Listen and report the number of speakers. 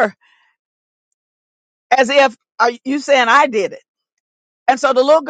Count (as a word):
one